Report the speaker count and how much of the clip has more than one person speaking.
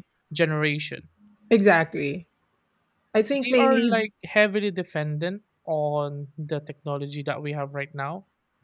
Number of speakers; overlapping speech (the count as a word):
two, about 7%